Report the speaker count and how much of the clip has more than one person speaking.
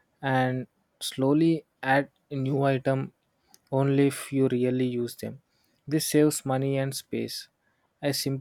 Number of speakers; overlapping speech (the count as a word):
one, no overlap